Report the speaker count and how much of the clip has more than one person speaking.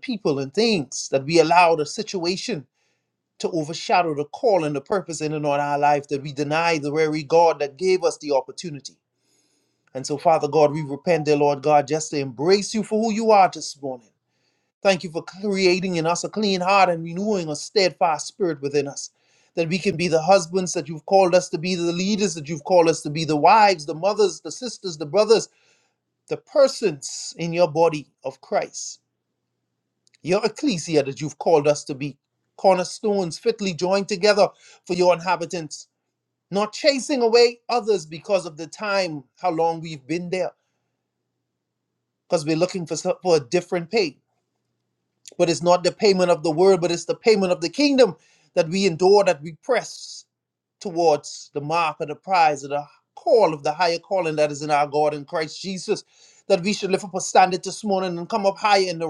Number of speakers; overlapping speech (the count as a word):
one, no overlap